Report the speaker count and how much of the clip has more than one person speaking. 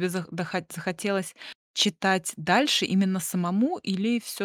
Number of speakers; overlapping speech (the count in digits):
1, no overlap